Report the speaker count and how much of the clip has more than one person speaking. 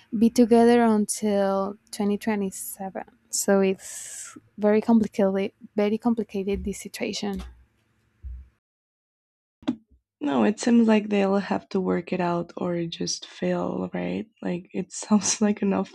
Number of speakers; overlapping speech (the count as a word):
two, no overlap